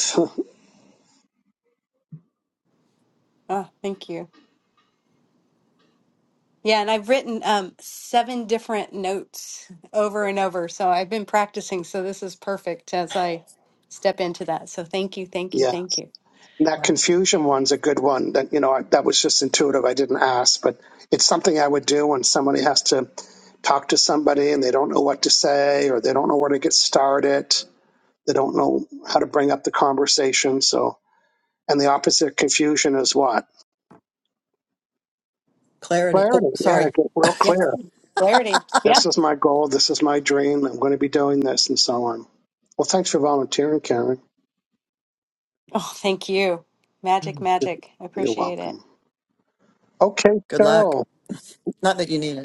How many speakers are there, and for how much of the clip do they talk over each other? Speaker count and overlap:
3, about 5%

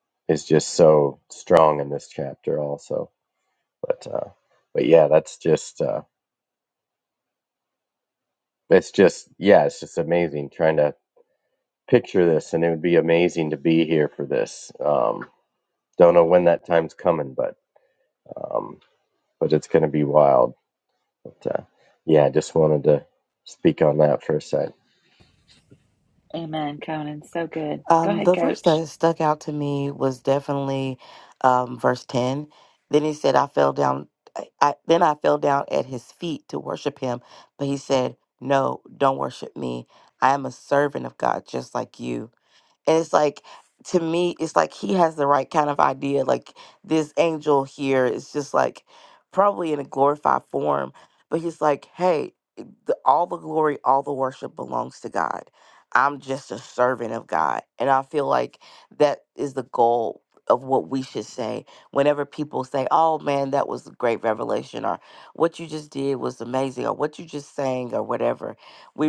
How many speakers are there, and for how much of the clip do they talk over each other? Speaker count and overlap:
3, about 1%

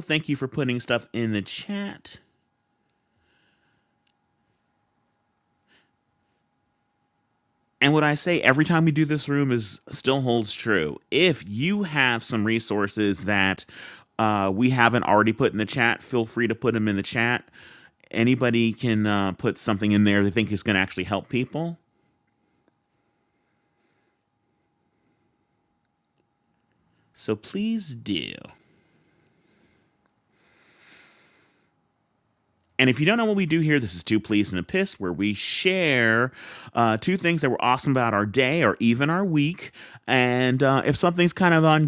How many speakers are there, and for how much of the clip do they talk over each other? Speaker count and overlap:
1, no overlap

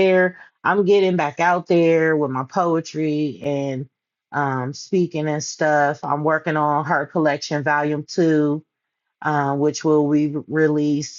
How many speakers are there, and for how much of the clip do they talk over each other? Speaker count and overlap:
1, no overlap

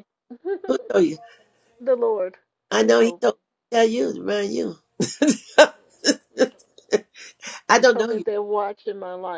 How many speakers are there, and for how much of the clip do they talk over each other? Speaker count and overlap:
2, about 9%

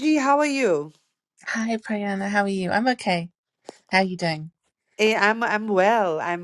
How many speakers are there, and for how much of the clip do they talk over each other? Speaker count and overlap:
2, no overlap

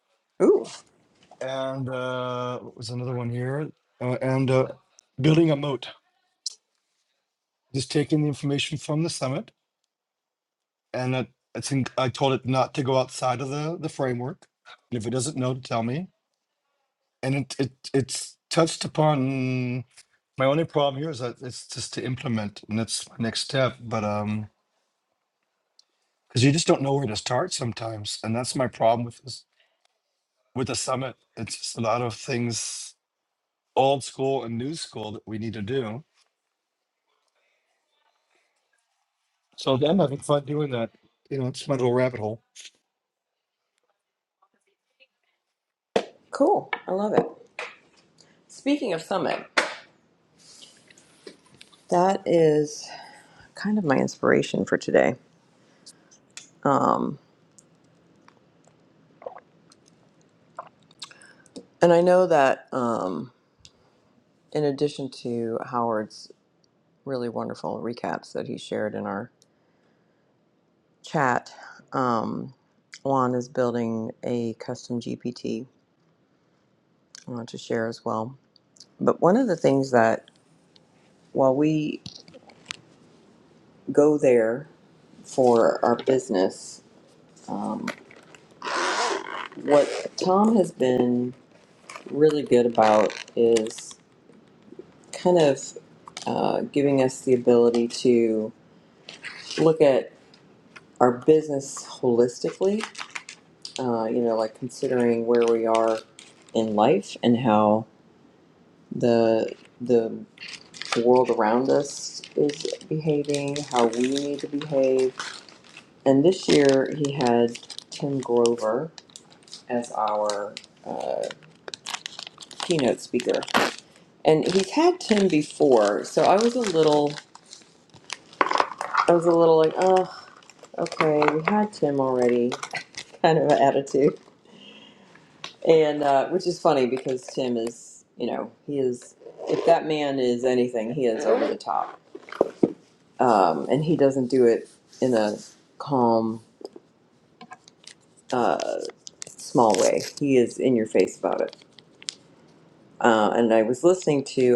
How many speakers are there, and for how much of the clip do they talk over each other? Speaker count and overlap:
2, no overlap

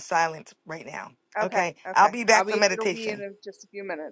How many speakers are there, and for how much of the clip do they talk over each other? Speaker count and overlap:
2, about 43%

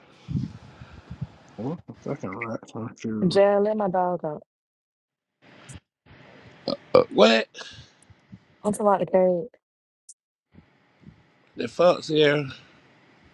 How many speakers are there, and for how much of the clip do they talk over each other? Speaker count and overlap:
3, about 1%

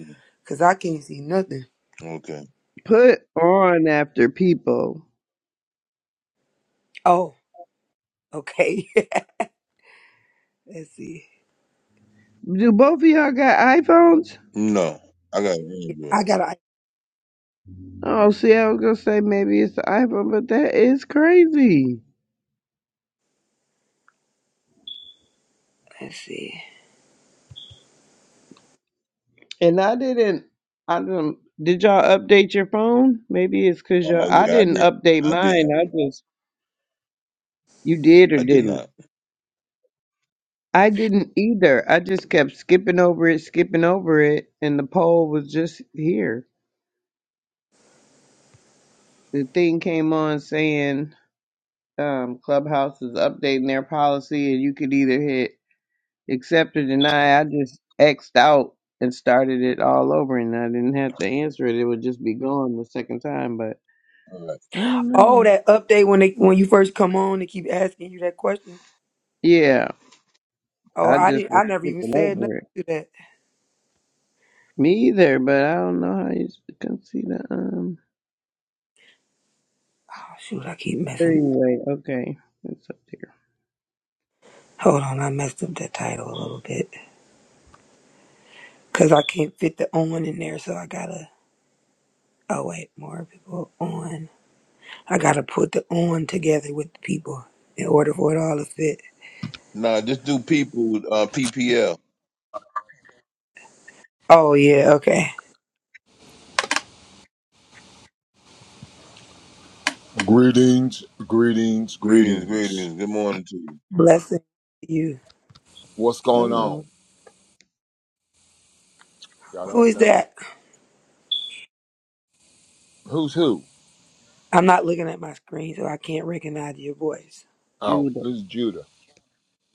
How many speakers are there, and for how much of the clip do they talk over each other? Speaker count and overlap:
4, about 5%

